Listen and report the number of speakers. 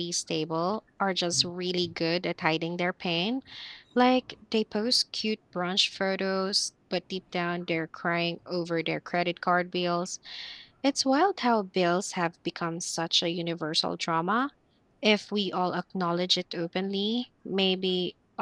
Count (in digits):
1